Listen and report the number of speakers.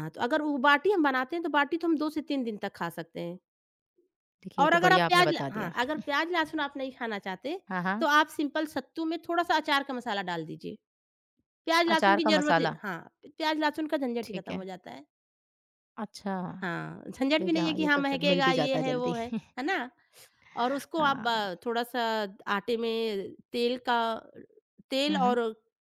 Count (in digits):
2